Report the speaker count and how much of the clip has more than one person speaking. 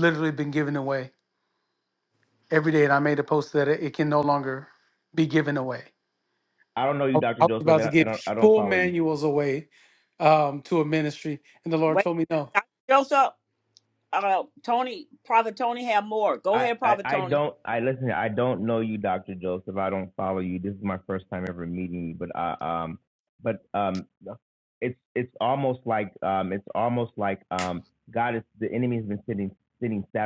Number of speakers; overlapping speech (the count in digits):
3, about 9%